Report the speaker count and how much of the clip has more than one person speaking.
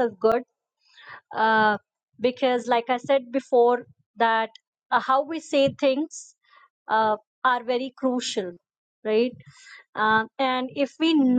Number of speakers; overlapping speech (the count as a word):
one, no overlap